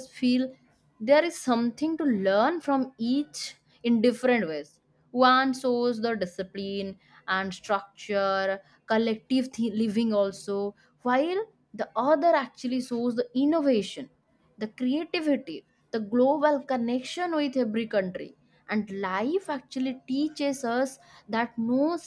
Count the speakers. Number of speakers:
1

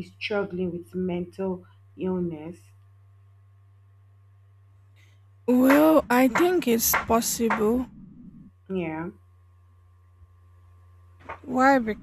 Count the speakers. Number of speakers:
2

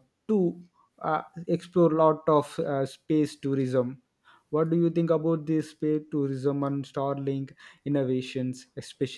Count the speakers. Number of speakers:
1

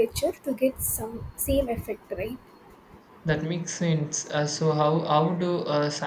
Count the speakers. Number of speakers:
2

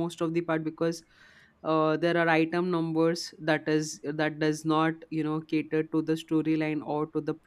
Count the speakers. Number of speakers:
1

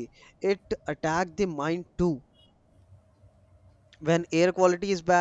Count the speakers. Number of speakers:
1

